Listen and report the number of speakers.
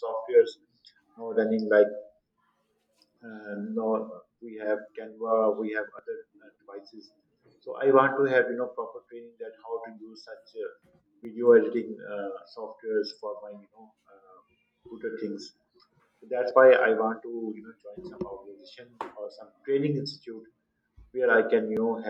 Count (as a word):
one